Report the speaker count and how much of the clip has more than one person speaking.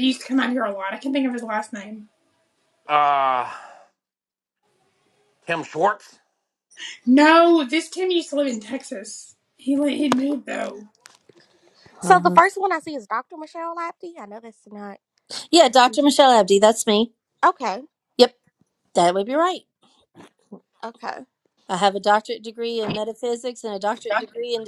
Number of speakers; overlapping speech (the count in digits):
4, about 1%